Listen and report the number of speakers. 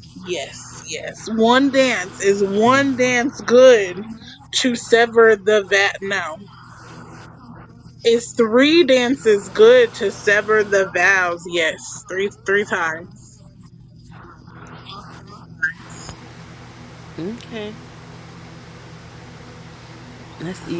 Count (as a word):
two